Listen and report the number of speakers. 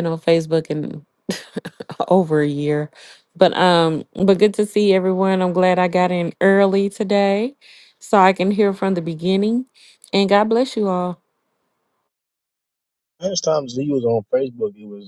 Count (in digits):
2